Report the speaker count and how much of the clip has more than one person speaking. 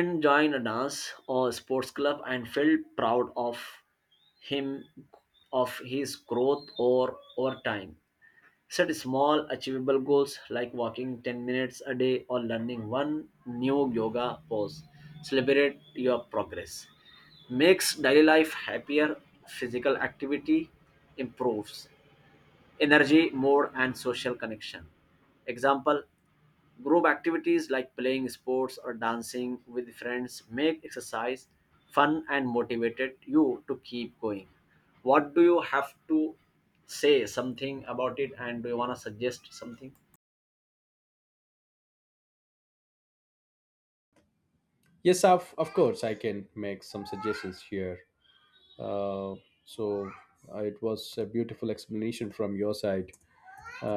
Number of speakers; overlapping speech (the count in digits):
2, no overlap